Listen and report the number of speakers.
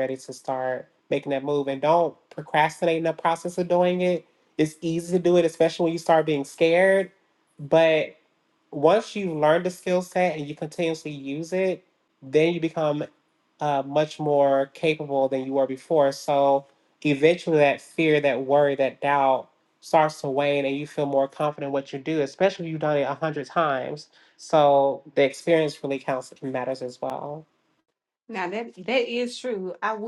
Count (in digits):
2